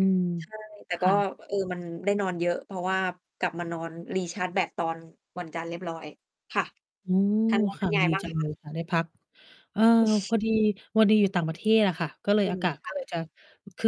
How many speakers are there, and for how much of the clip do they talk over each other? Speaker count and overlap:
2, about 12%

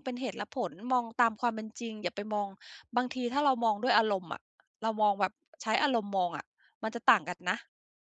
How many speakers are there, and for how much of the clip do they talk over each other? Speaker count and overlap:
1, no overlap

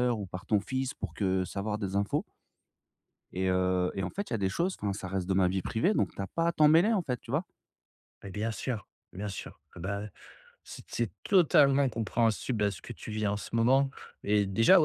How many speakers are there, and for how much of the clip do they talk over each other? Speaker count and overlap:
2, no overlap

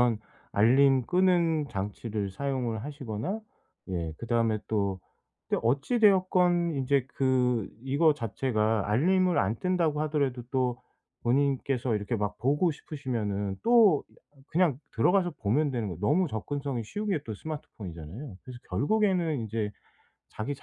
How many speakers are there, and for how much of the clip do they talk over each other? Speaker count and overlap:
1, no overlap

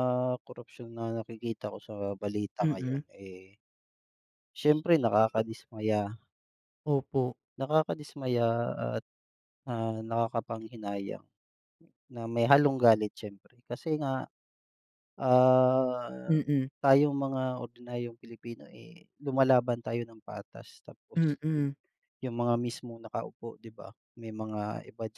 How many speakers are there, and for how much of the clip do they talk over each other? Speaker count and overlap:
2, about 2%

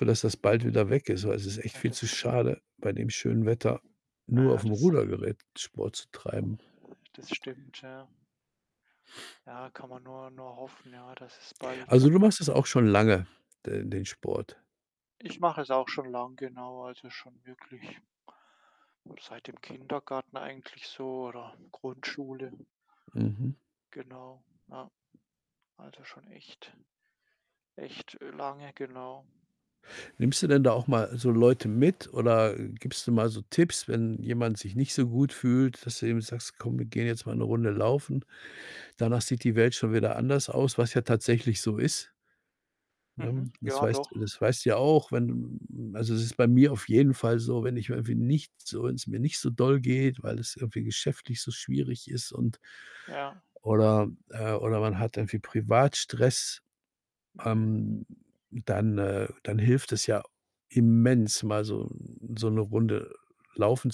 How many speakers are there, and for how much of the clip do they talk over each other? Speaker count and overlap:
2, about 4%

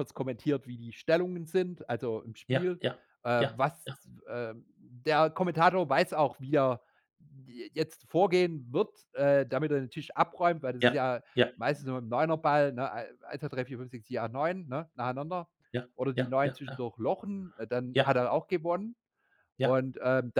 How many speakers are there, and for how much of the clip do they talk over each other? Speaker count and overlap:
2, about 10%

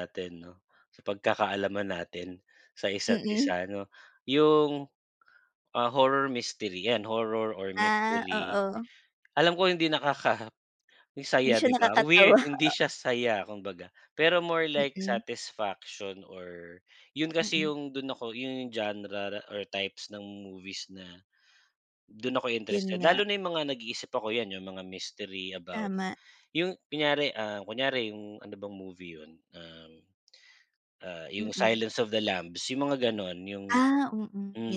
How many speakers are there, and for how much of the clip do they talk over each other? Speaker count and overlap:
2, about 12%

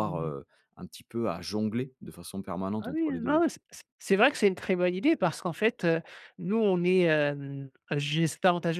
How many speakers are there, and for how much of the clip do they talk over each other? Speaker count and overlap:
2, about 10%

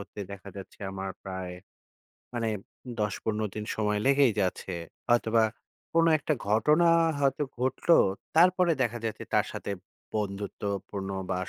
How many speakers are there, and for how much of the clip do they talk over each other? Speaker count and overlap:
1, no overlap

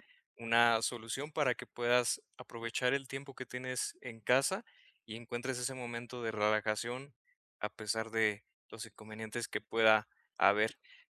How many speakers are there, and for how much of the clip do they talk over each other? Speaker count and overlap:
1, no overlap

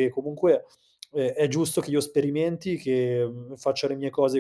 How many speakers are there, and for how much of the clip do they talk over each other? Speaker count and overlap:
1, no overlap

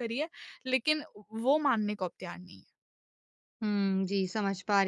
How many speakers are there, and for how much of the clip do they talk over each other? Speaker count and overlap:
2, no overlap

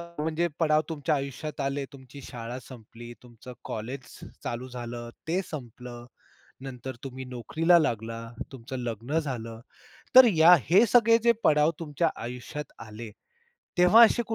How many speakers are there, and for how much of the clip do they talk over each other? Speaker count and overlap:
1, no overlap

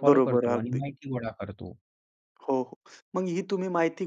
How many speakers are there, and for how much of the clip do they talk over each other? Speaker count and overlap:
2, about 19%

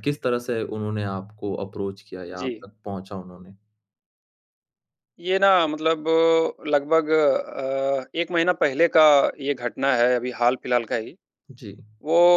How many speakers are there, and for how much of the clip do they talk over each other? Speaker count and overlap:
2, about 1%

